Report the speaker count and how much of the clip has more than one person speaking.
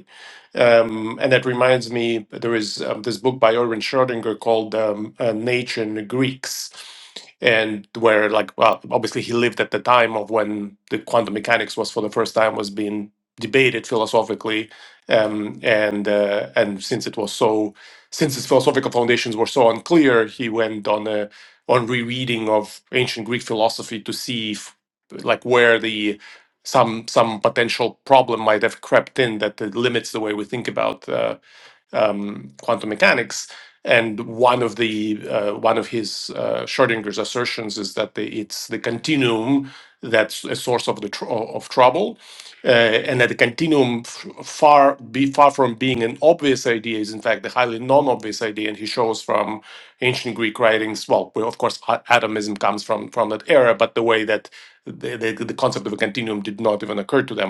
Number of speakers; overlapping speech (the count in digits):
1, no overlap